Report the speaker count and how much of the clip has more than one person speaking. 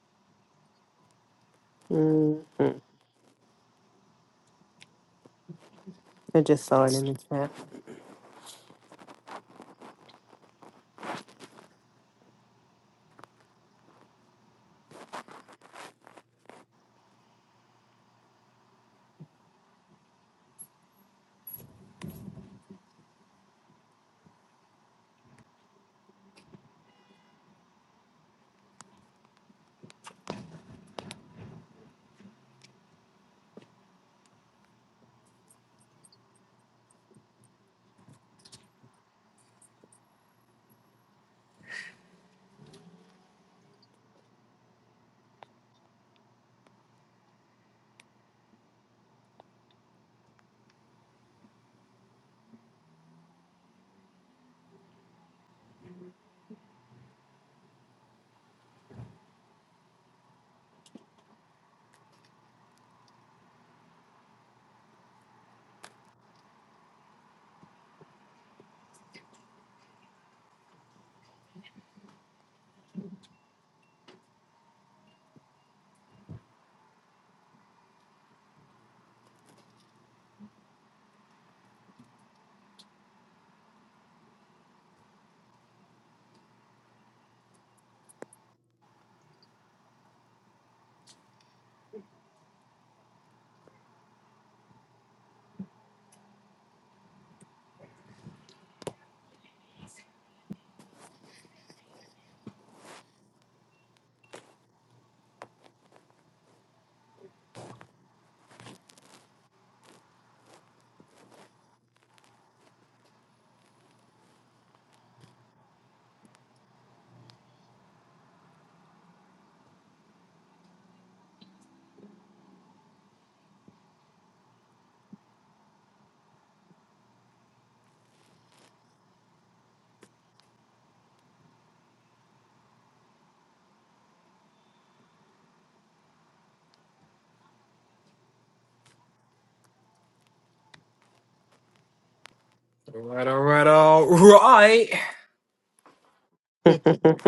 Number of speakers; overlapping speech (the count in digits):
2, no overlap